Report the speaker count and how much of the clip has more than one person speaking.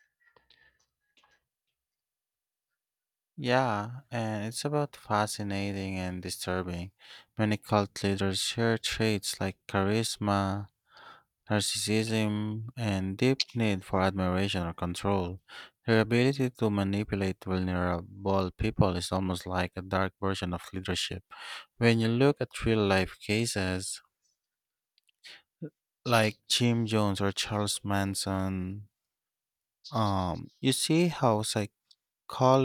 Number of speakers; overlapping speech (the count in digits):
1, no overlap